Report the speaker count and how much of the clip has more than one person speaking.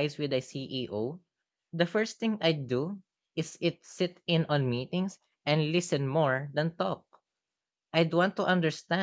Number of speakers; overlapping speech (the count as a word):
one, no overlap